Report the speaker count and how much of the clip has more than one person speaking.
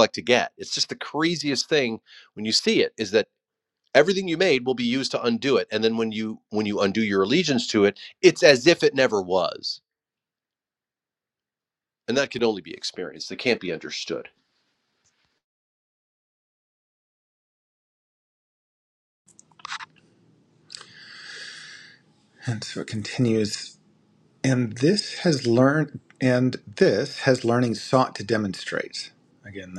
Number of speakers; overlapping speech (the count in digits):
2, no overlap